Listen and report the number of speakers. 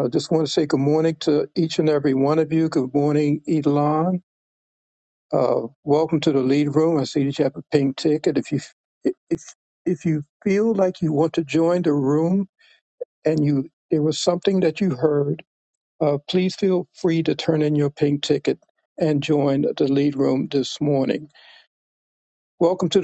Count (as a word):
one